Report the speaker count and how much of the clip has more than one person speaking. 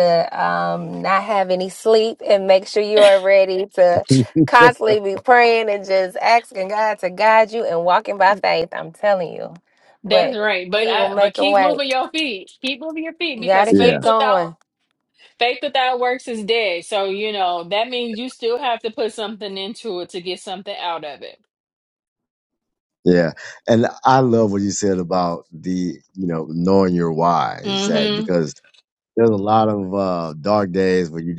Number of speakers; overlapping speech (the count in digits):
3, about 10%